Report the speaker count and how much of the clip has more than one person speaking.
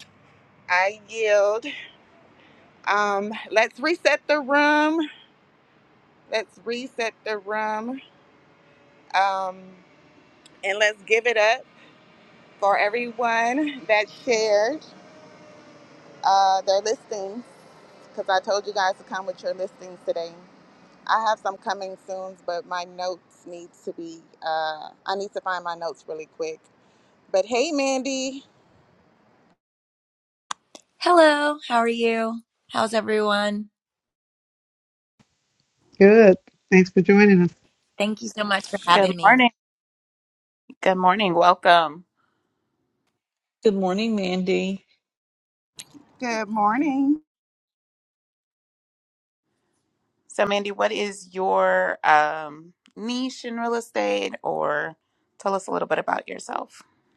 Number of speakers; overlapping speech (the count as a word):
five, about 1%